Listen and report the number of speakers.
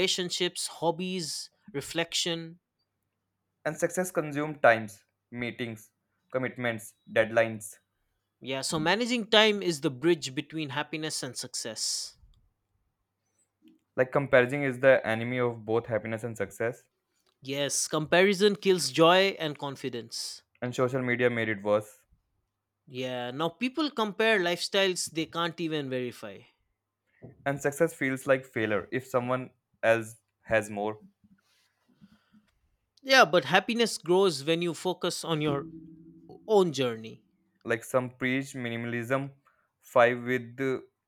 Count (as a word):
two